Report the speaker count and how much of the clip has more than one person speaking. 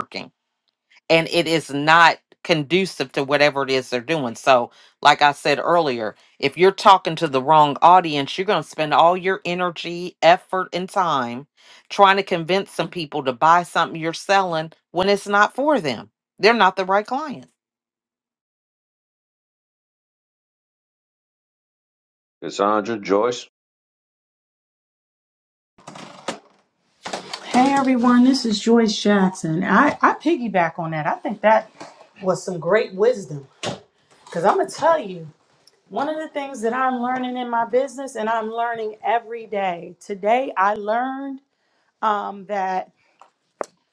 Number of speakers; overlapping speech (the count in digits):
3, no overlap